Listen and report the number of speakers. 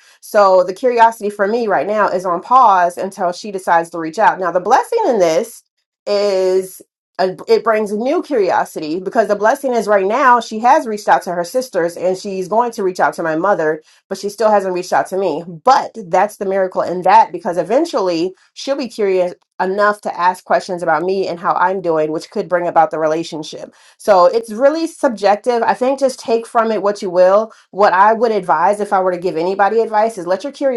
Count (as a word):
one